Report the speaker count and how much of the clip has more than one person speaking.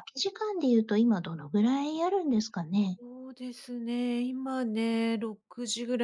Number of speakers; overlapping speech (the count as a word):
two, no overlap